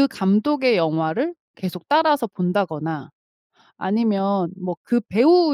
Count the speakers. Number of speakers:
1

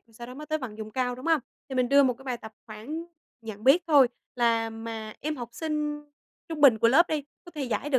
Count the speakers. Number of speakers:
1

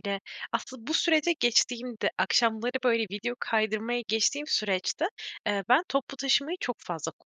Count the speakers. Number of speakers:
1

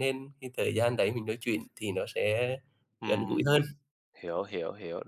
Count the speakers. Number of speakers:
2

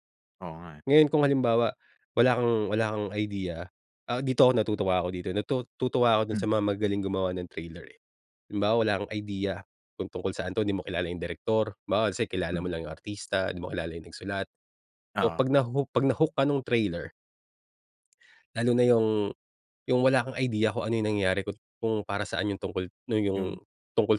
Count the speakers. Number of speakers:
2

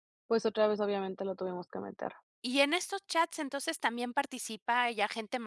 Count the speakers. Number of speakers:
2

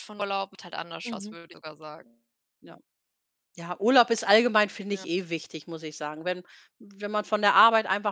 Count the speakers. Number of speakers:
2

